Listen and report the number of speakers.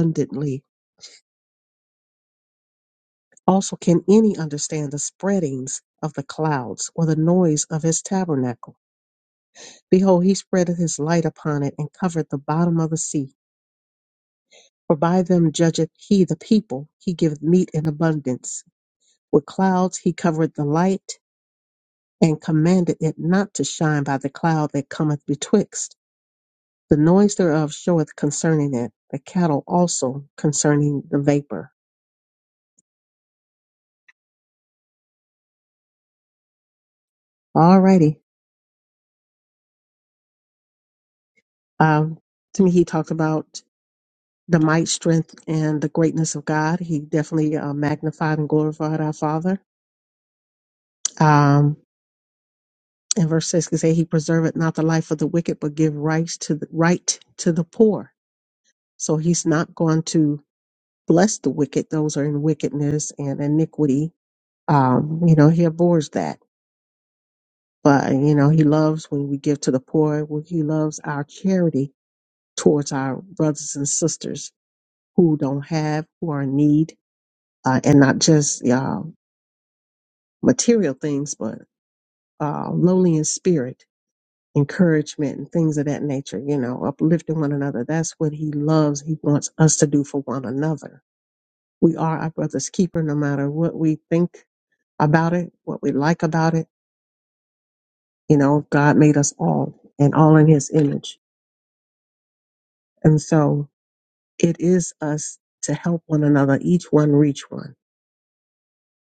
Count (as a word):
one